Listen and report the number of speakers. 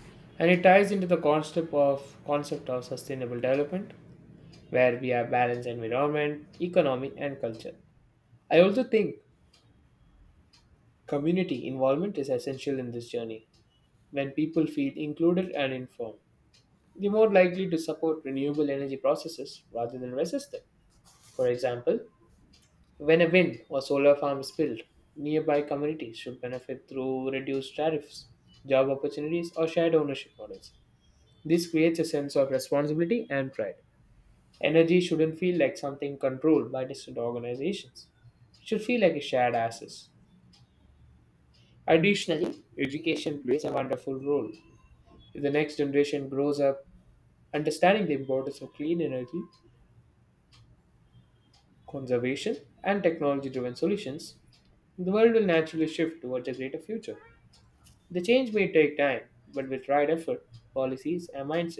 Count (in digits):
1